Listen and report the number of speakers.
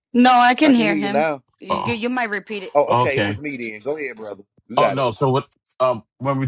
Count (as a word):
three